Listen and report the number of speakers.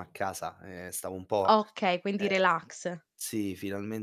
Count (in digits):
2